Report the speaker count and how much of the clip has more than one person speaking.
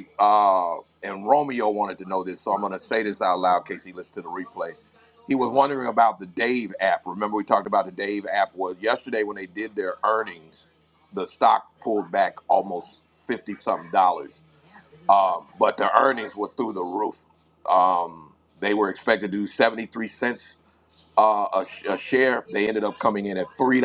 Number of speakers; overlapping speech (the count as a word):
one, no overlap